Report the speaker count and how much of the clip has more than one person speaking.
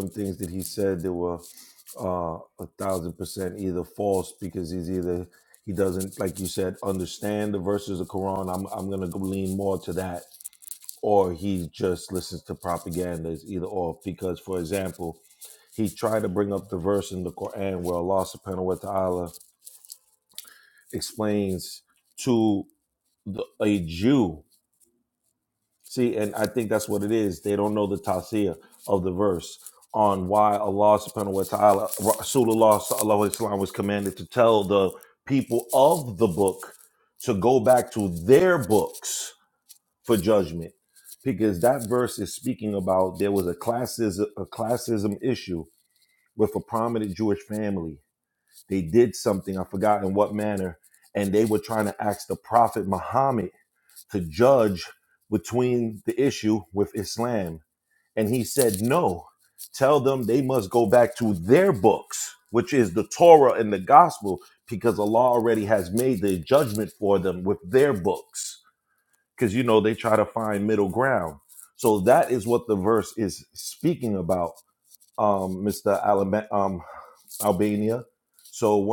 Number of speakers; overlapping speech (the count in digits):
1, no overlap